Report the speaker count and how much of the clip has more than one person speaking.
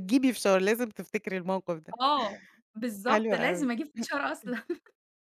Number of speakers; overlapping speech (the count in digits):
2, about 11%